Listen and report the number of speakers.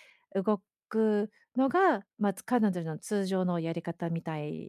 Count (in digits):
1